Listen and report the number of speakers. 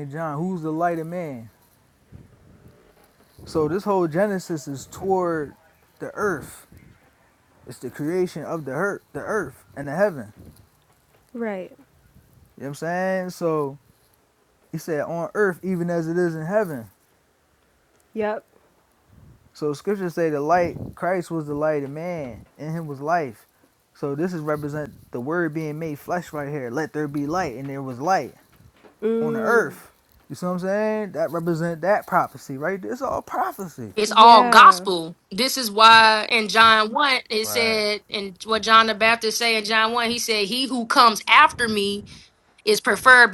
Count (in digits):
3